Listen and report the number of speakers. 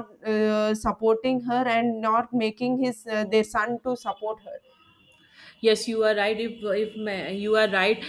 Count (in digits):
2